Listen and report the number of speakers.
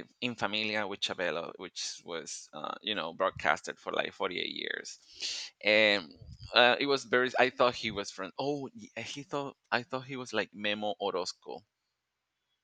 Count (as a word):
one